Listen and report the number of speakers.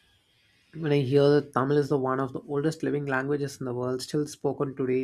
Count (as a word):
one